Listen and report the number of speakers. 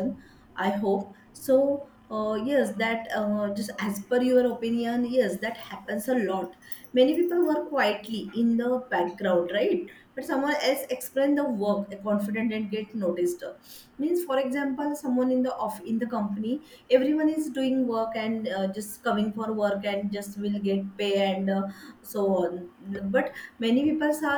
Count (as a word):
one